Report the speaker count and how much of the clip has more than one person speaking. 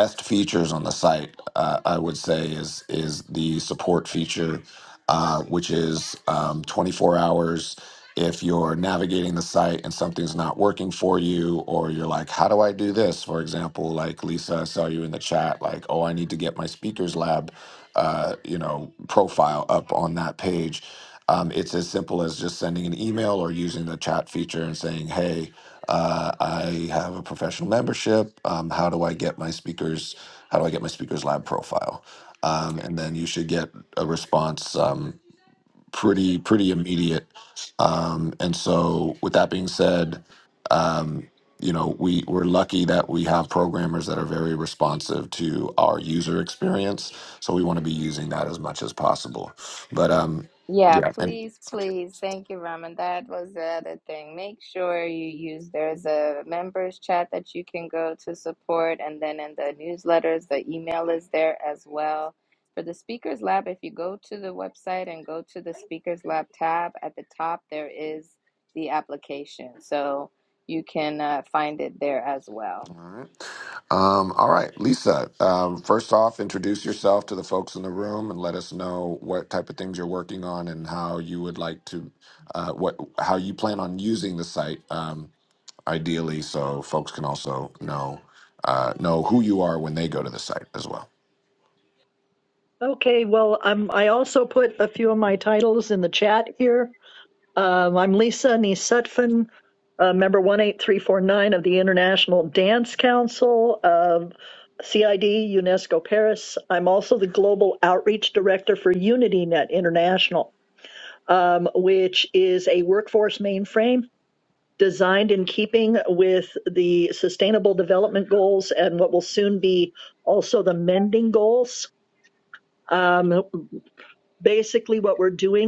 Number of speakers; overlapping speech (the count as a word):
three, under 1%